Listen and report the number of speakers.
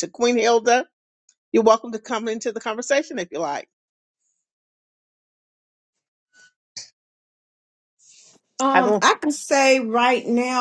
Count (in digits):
2